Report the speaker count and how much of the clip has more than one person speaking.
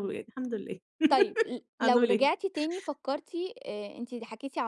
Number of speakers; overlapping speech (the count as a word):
two, about 11%